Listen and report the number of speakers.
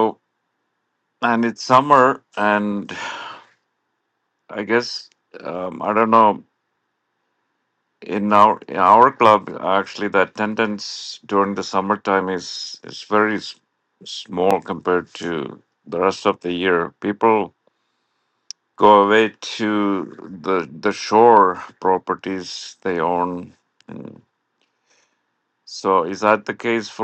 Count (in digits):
1